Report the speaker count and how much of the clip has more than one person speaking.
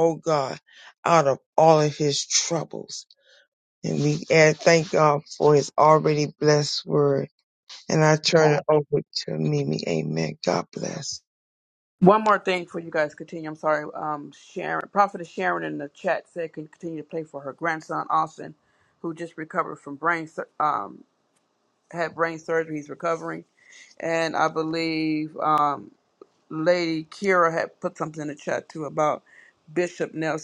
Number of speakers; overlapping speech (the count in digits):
2, no overlap